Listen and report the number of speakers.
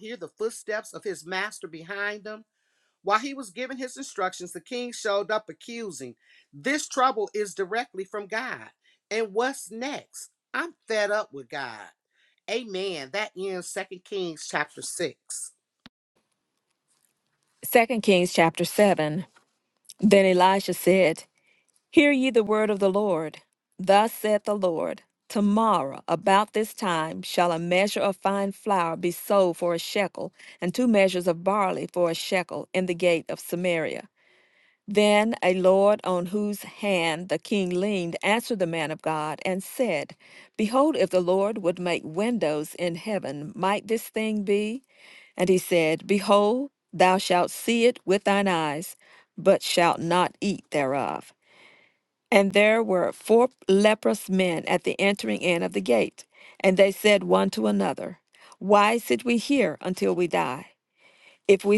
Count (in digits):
2